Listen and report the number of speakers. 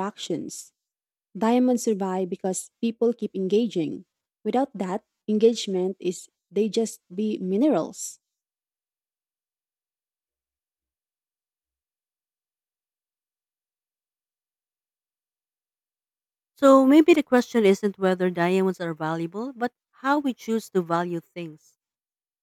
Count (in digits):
2